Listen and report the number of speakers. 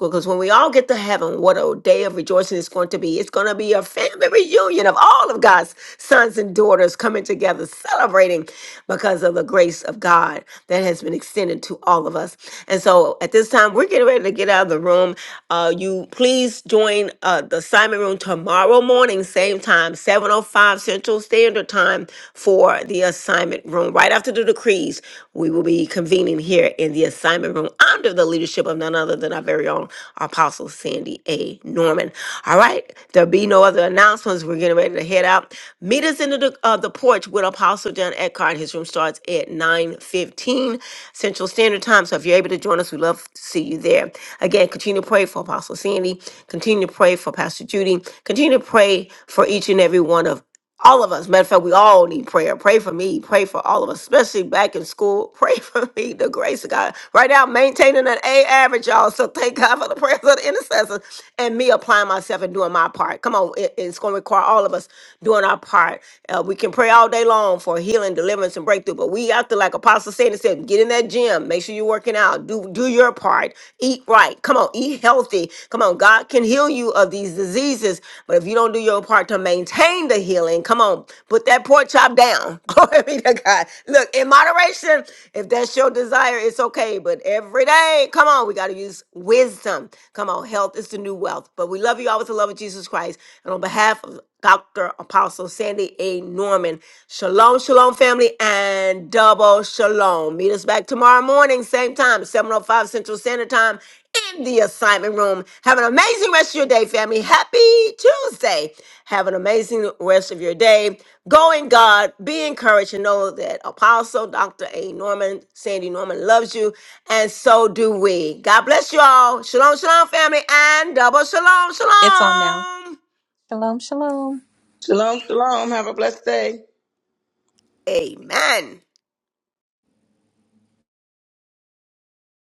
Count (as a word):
three